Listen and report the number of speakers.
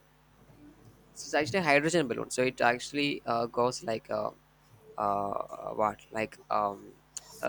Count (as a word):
one